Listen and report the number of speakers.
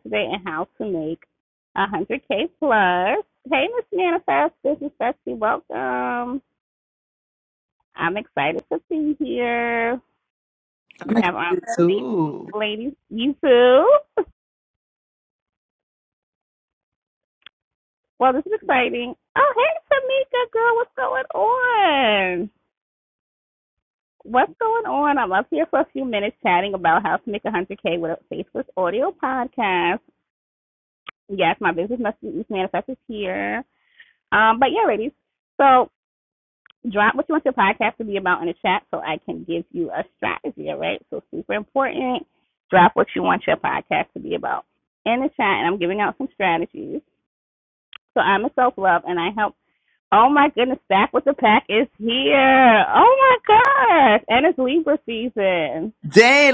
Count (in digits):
2